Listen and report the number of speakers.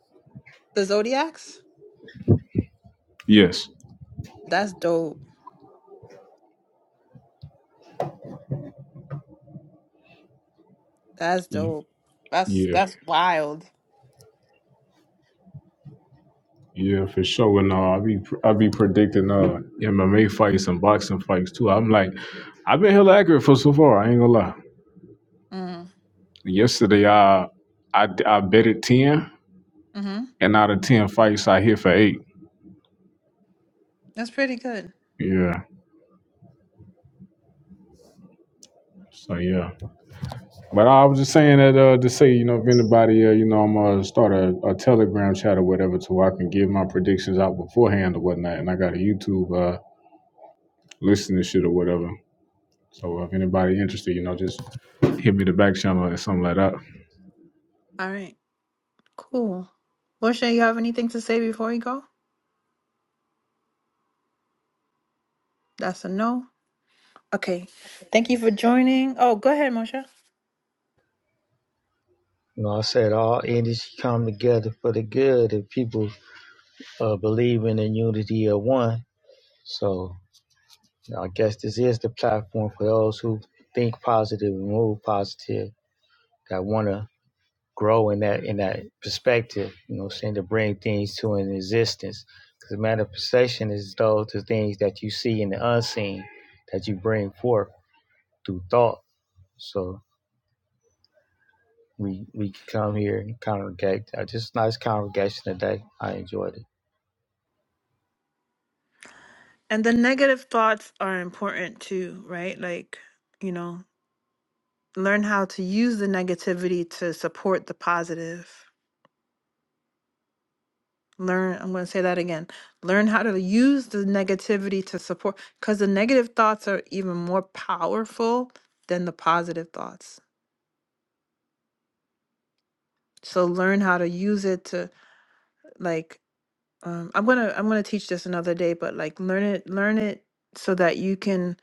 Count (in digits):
3